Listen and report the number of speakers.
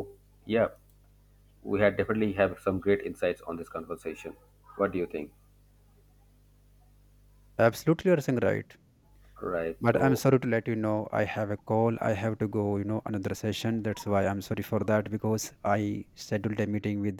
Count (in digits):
2